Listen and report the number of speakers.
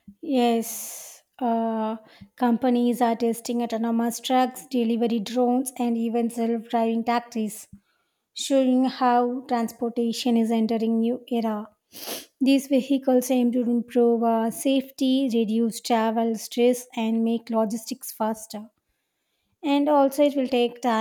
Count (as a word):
one